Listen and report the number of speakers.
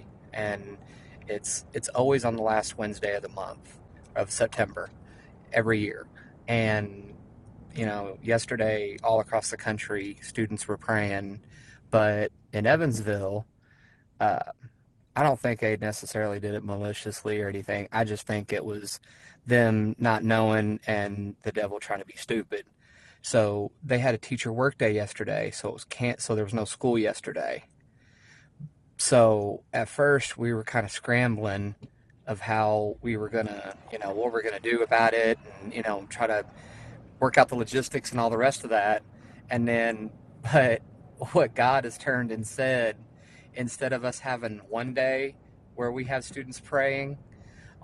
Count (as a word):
one